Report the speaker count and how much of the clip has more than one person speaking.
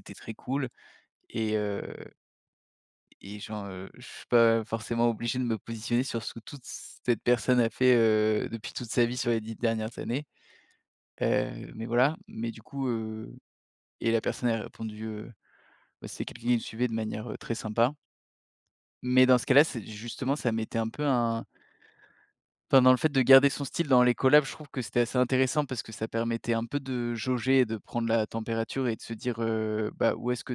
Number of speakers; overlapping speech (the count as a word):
one, no overlap